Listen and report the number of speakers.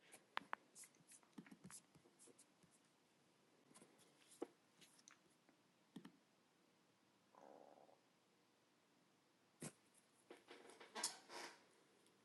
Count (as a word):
zero